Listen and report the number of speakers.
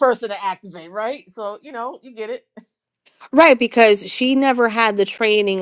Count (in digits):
2